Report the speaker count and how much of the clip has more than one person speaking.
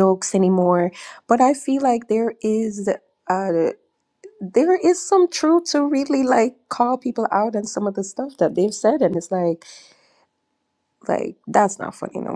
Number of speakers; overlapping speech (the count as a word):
one, no overlap